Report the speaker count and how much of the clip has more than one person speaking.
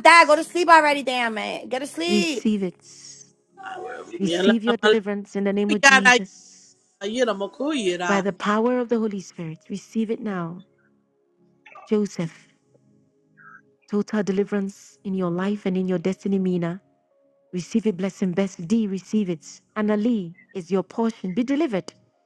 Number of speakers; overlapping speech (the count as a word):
three, about 8%